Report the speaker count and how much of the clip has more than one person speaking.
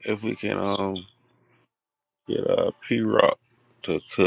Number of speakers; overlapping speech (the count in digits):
1, no overlap